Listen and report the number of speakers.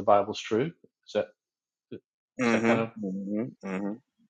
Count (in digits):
2